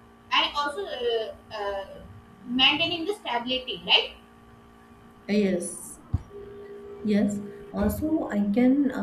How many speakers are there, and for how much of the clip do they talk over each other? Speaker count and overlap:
2, no overlap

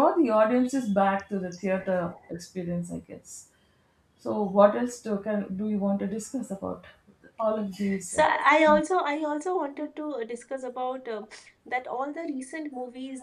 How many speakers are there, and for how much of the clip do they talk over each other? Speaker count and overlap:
2, about 1%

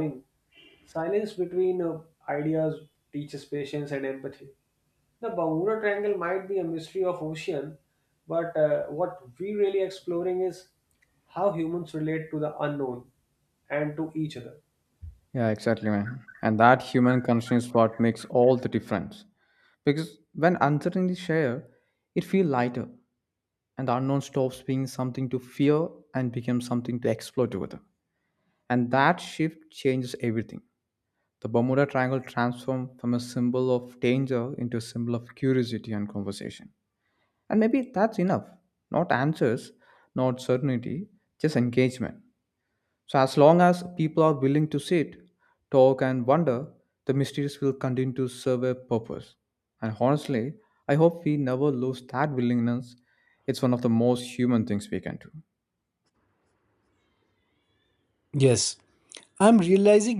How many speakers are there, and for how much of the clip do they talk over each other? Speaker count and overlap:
3, no overlap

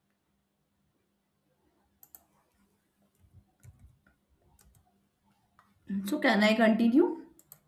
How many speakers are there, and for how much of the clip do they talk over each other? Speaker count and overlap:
1, no overlap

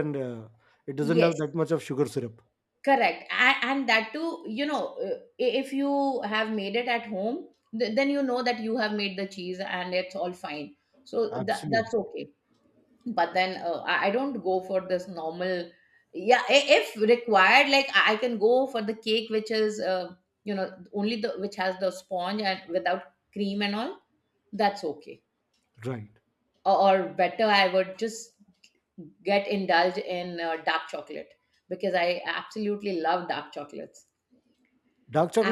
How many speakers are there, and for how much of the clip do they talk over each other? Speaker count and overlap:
2, about 3%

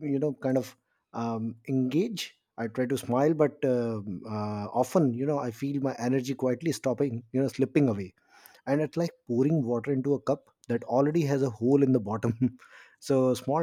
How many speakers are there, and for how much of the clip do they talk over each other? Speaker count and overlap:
1, no overlap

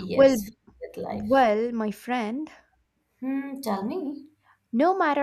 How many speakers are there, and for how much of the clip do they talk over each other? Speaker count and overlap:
2, about 8%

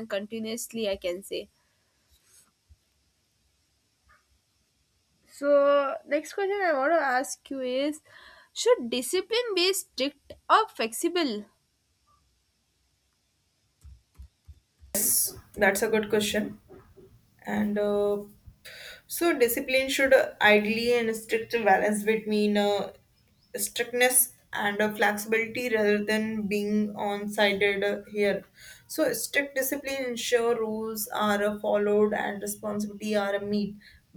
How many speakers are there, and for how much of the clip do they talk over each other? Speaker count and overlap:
2, no overlap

